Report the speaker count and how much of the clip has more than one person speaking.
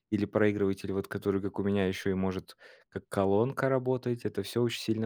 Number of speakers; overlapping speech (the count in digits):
1, no overlap